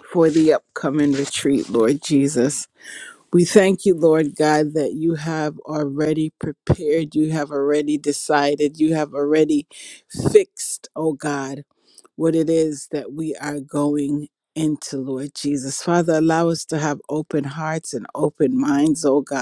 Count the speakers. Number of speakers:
one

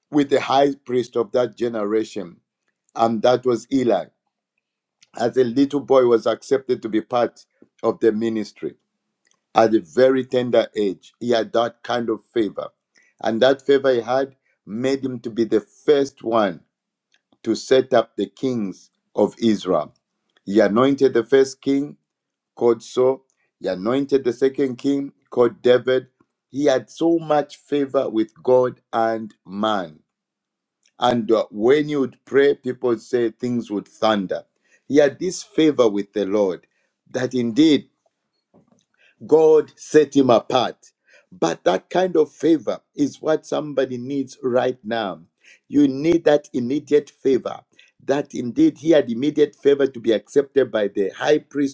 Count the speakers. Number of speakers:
one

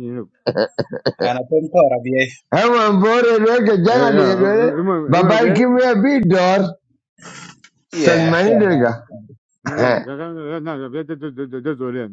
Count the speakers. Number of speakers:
three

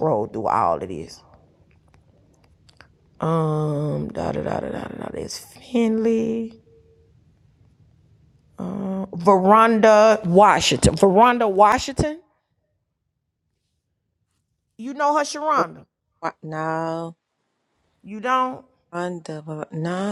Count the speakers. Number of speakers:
two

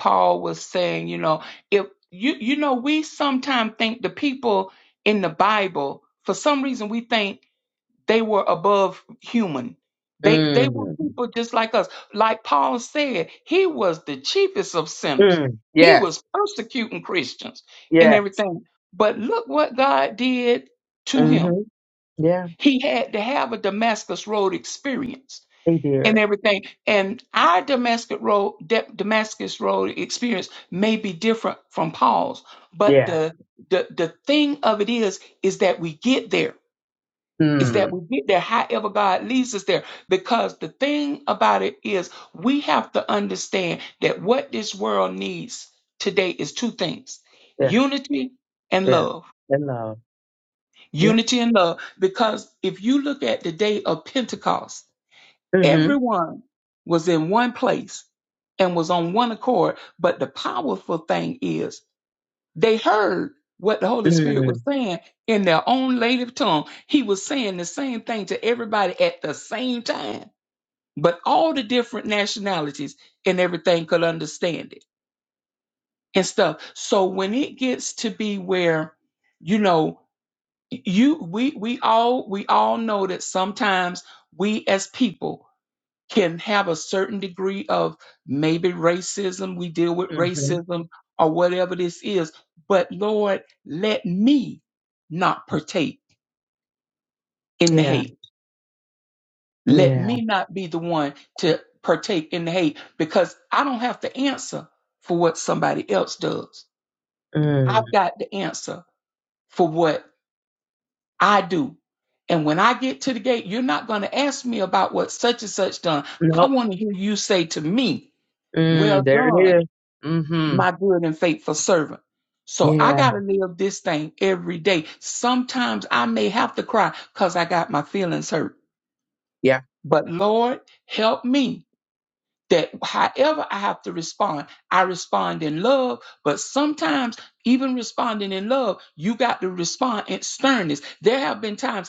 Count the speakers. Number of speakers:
two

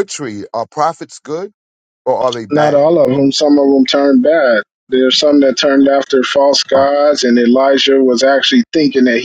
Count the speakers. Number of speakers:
two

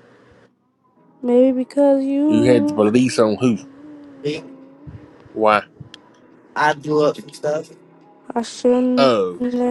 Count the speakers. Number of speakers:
three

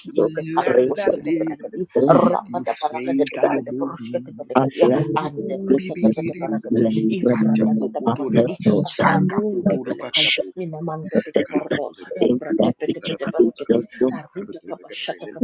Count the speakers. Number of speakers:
three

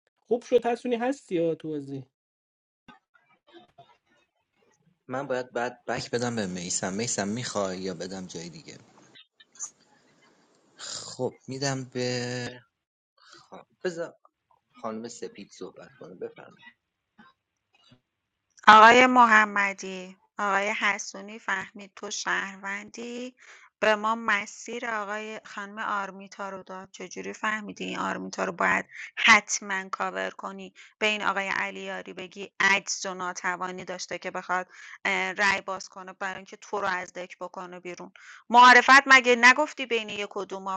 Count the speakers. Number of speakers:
three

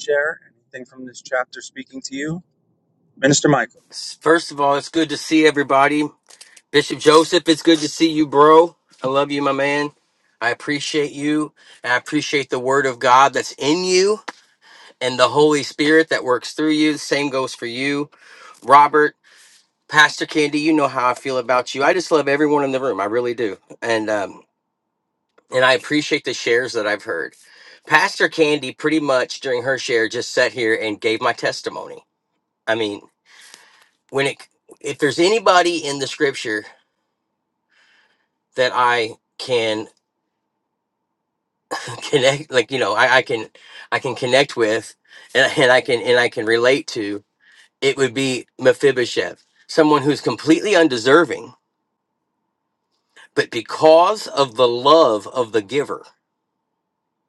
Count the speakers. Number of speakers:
two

